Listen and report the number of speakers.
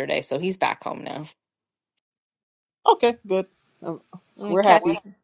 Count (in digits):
2